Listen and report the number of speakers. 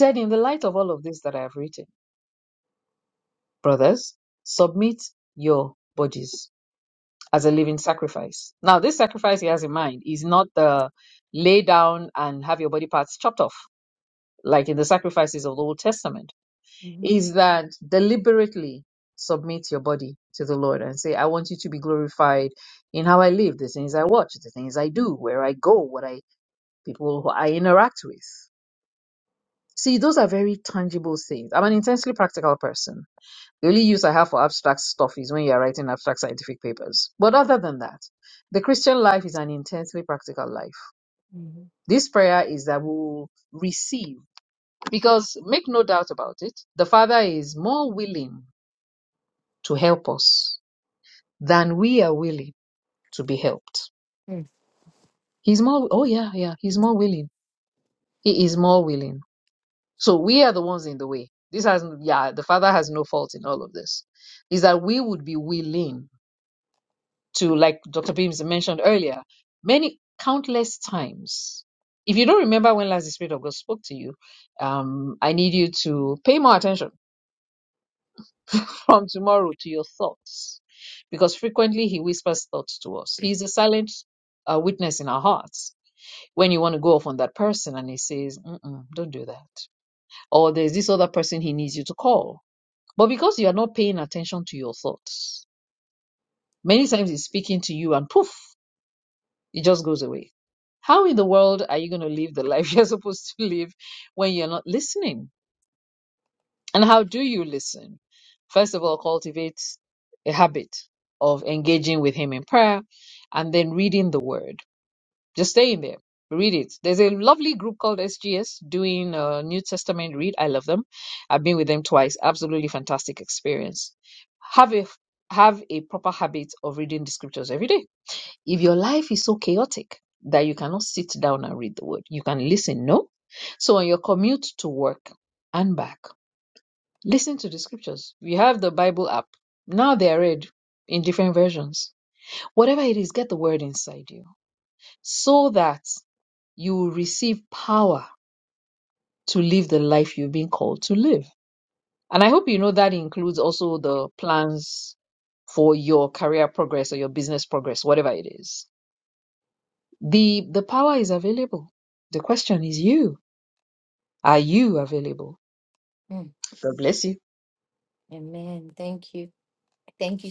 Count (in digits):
2